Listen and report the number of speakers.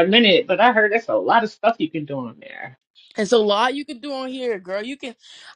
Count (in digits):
2